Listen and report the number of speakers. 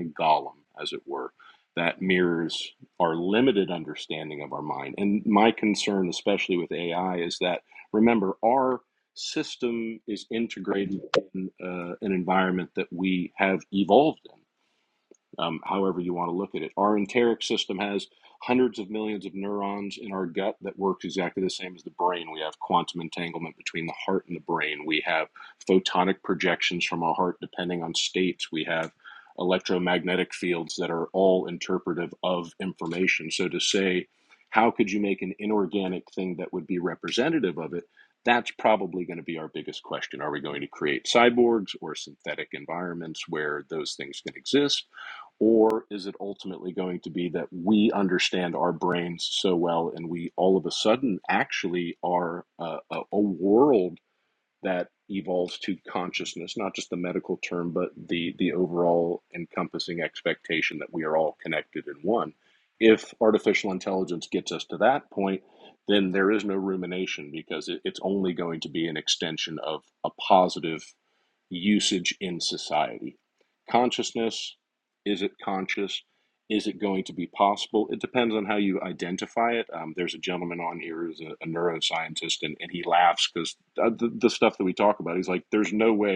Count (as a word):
one